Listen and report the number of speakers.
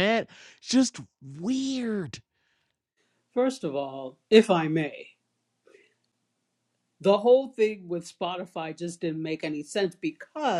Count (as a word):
two